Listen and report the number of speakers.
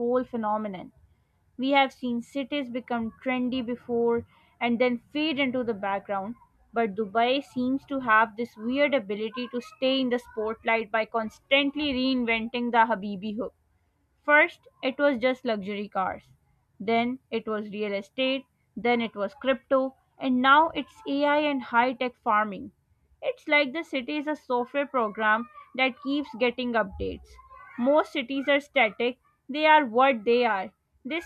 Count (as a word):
one